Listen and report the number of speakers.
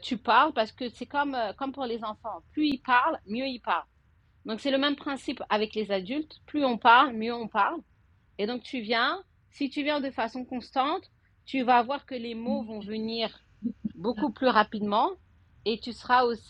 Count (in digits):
1